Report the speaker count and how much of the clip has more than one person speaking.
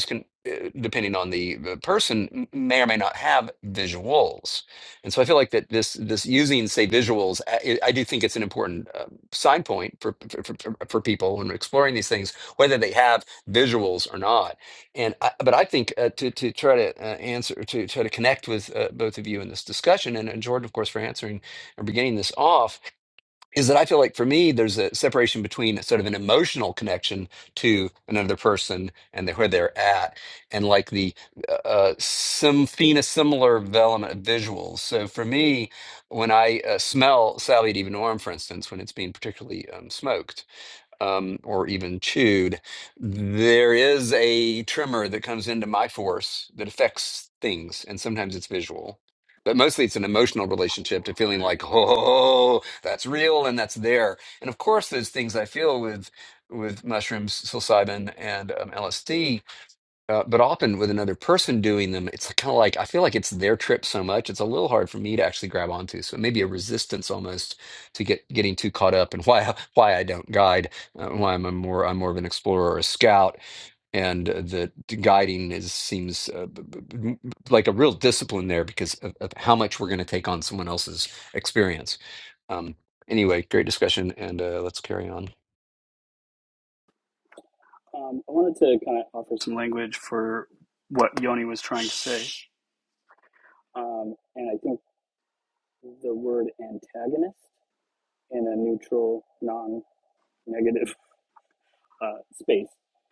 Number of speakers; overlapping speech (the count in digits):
2, no overlap